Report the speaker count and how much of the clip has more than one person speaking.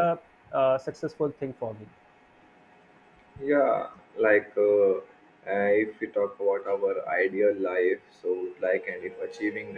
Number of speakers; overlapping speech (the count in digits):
2, no overlap